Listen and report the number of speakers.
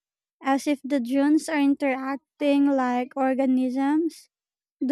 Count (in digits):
1